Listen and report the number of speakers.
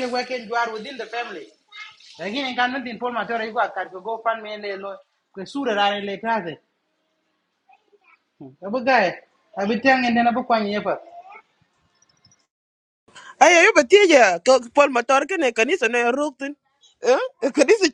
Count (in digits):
2